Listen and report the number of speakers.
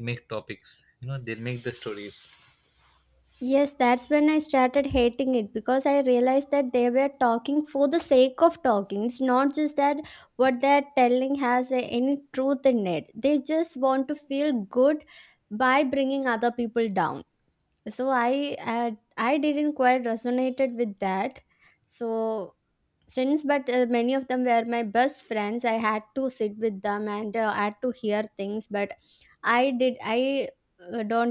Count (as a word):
two